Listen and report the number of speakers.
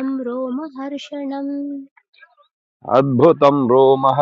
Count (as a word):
two